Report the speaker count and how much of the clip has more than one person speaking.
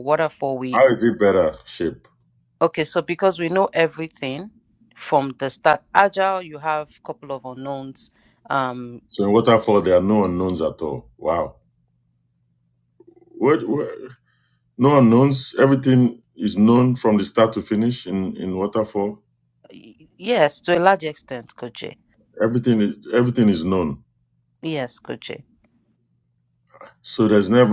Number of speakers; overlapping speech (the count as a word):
two, about 1%